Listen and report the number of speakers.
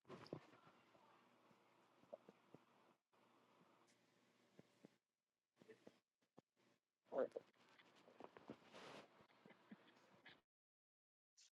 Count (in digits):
0